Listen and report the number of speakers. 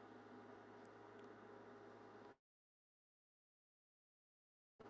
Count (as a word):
zero